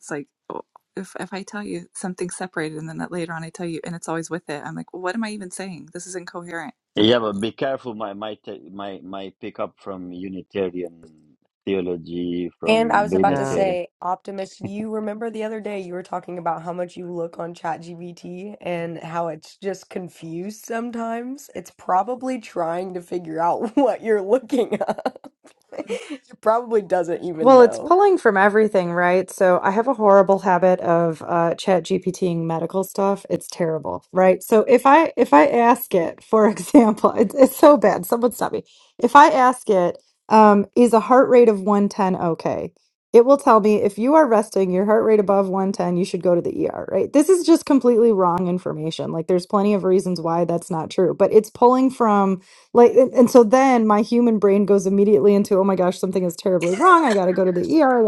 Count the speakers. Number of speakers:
four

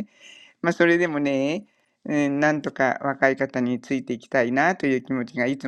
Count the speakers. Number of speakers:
one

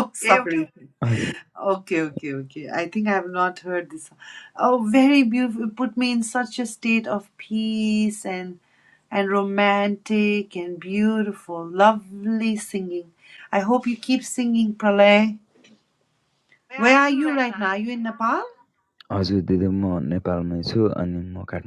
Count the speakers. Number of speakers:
two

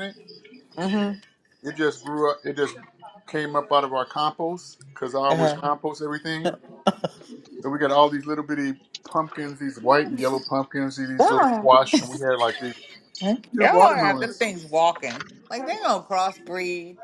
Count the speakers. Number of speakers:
two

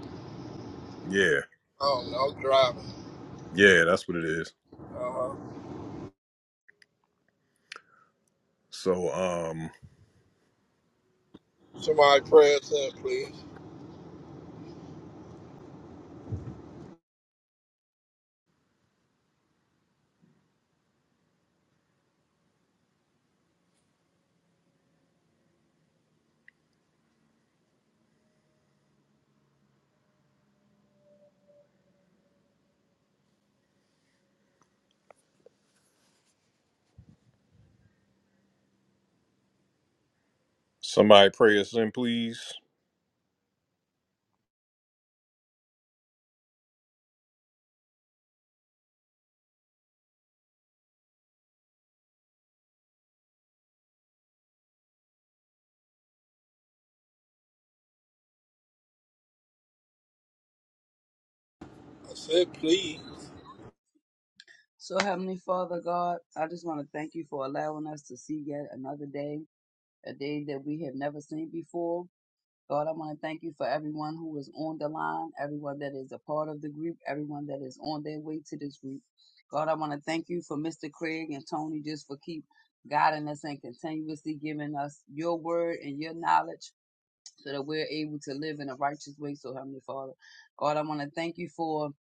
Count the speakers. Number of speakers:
three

